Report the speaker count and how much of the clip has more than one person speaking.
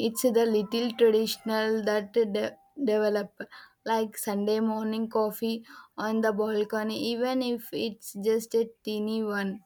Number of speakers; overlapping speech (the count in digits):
1, no overlap